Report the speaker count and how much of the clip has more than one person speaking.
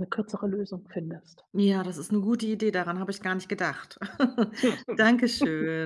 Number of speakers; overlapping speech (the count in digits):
2, no overlap